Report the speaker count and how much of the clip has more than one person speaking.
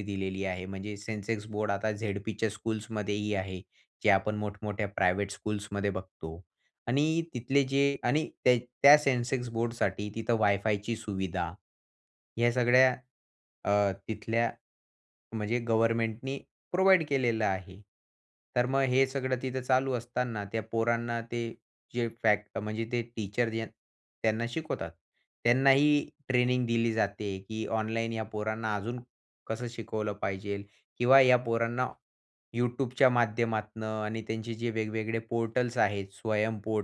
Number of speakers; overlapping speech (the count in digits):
1, no overlap